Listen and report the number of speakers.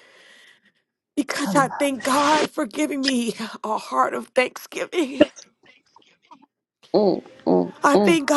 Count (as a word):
two